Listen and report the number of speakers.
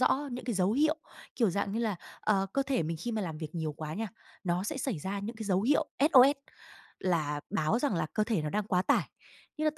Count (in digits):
1